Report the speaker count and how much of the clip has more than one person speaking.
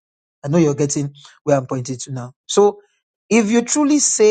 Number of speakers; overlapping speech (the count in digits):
1, no overlap